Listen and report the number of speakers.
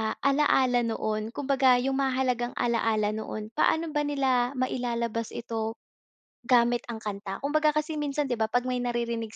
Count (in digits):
1